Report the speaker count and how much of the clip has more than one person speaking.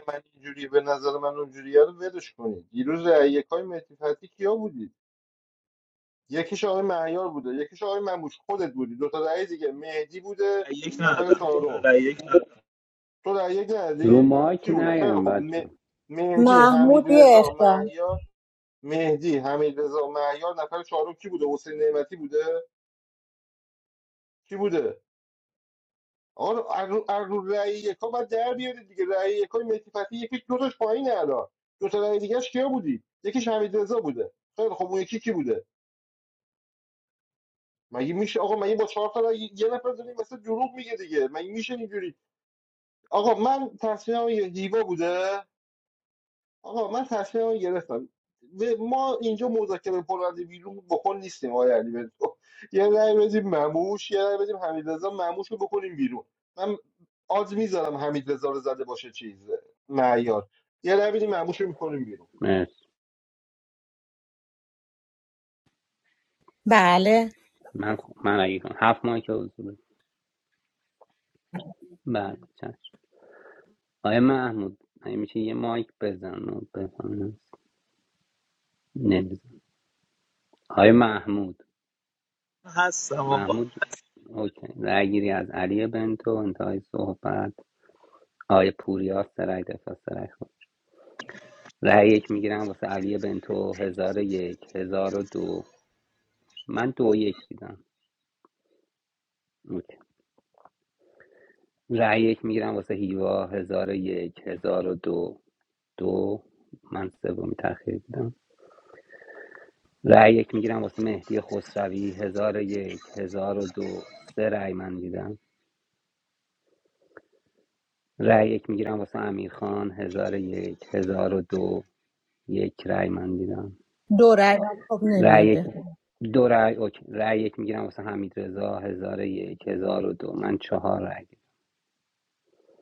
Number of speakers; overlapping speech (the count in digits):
4, about 3%